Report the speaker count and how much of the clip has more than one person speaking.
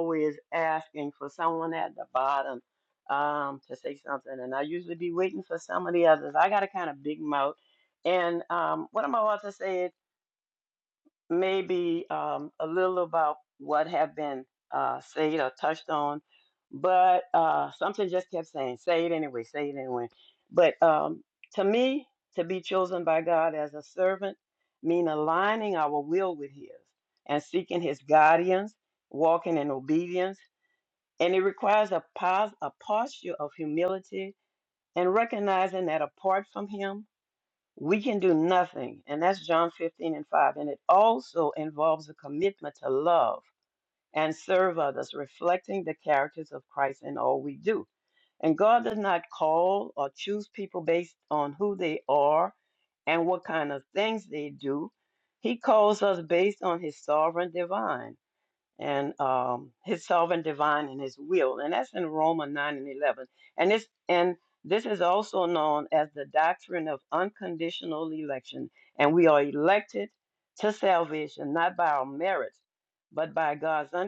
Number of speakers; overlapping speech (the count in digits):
1, no overlap